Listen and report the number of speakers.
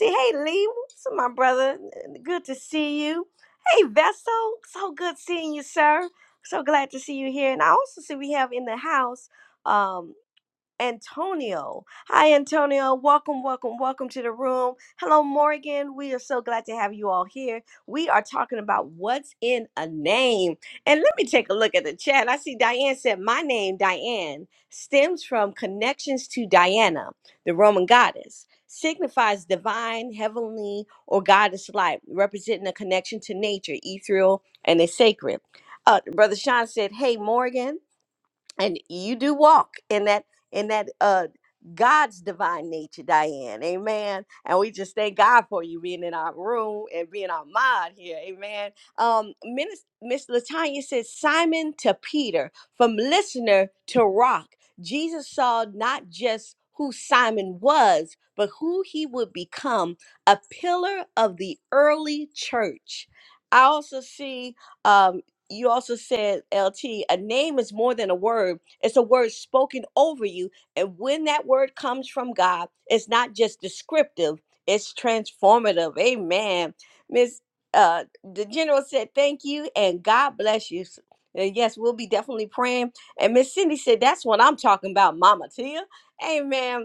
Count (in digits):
1